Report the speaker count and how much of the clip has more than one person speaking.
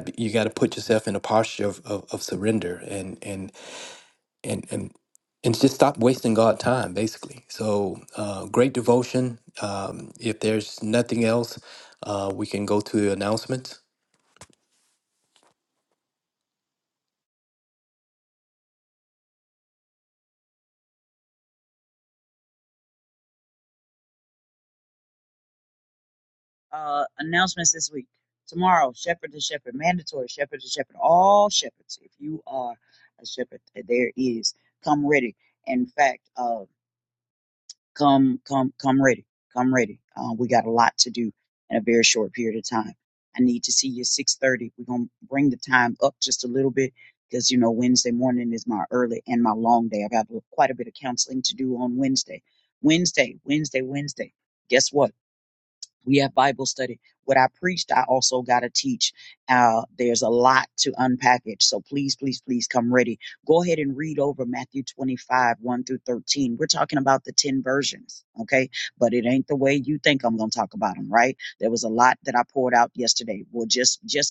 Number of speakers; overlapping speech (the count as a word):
two, no overlap